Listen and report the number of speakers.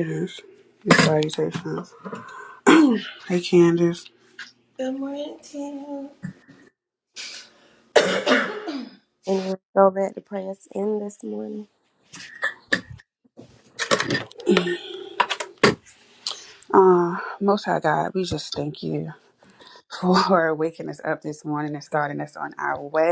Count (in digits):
3